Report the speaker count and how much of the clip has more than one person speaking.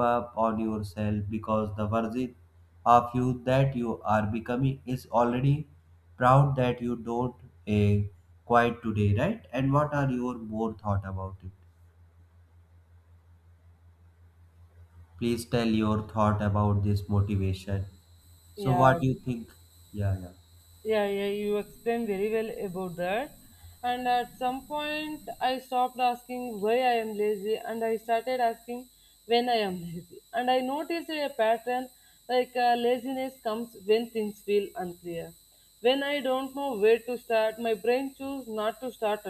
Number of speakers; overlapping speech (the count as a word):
two, about 1%